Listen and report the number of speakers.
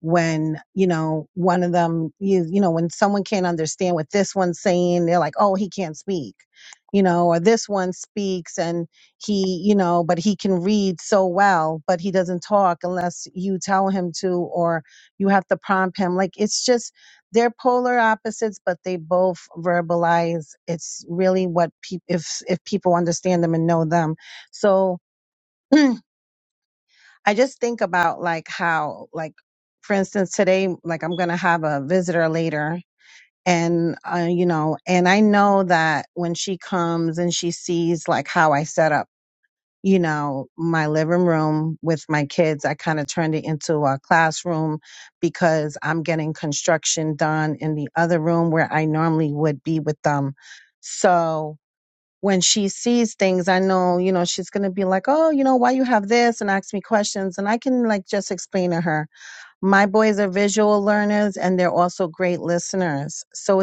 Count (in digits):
1